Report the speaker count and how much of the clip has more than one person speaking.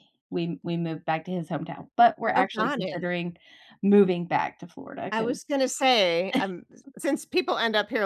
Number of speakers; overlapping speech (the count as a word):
two, about 11%